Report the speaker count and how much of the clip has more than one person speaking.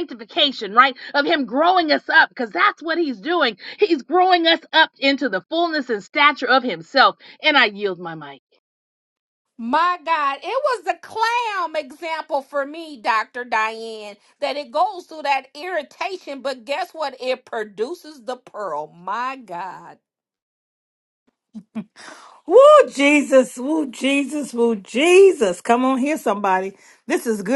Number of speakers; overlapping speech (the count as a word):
three, no overlap